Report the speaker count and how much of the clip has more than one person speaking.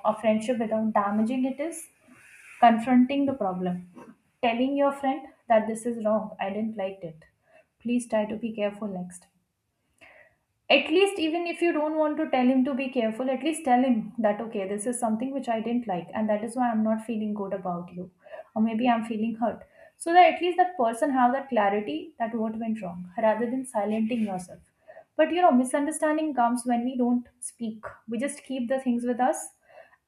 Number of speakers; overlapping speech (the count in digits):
1, no overlap